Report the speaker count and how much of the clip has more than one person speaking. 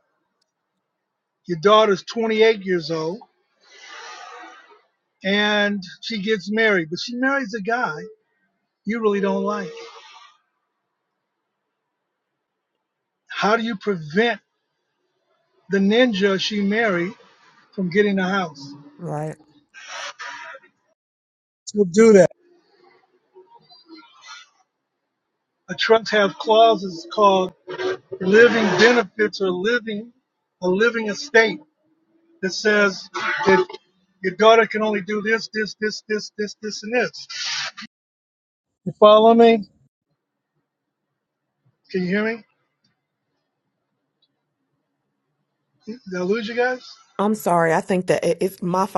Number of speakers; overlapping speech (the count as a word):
two, no overlap